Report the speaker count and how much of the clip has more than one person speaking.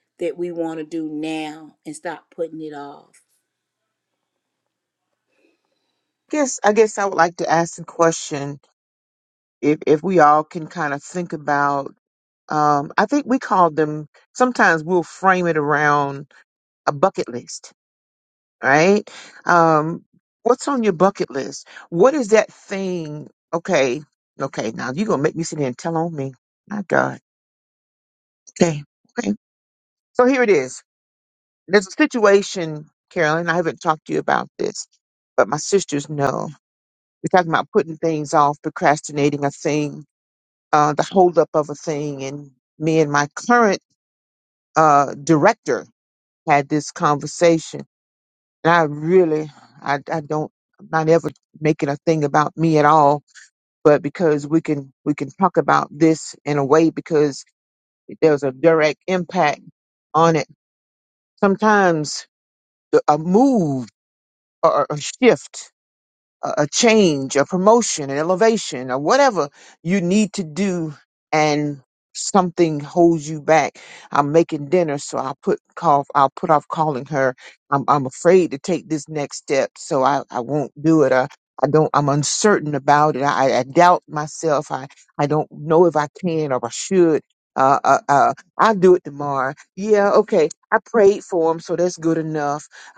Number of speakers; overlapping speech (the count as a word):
two, no overlap